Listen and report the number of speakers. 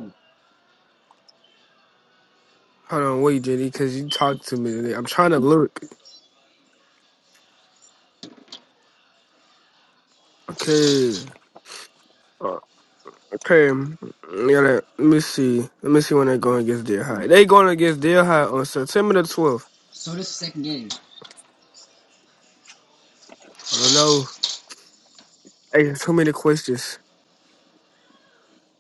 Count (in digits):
2